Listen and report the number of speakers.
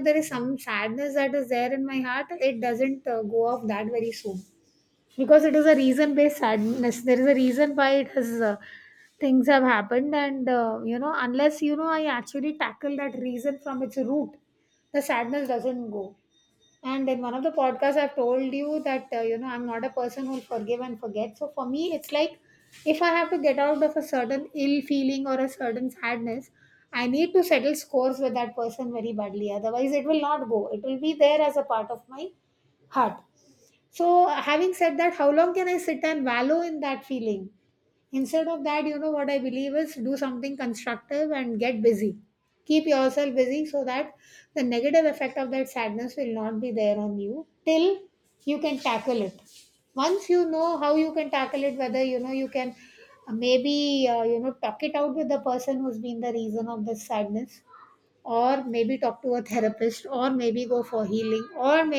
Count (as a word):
one